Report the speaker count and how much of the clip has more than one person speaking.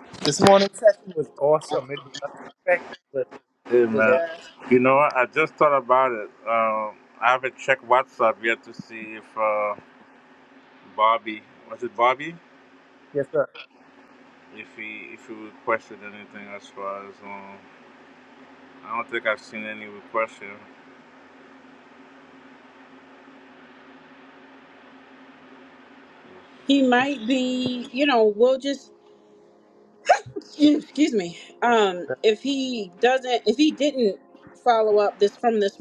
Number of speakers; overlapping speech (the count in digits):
3, about 1%